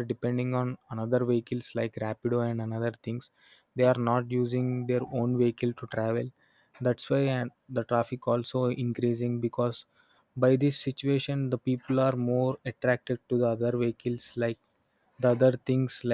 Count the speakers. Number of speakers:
1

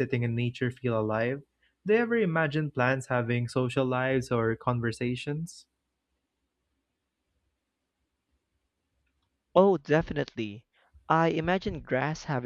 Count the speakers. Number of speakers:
2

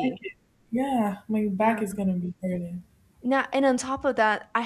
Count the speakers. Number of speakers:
2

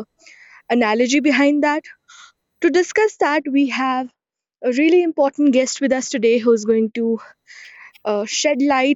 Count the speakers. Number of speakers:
1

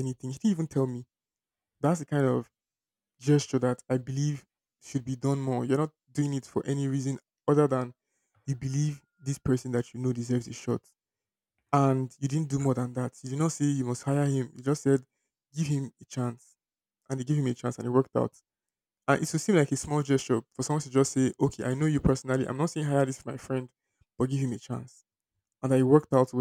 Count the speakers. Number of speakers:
1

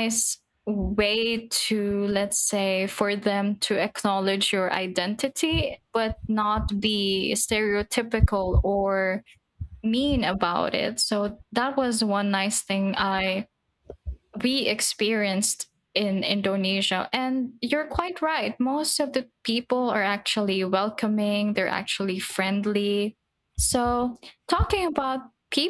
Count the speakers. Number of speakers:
1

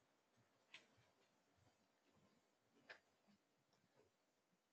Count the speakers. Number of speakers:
0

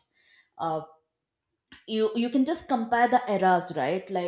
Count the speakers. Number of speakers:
1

